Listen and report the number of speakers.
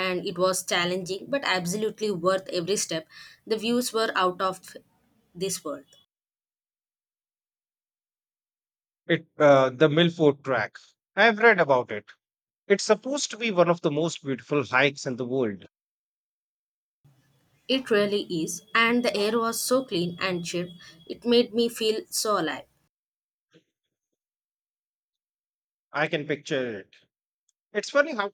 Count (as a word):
two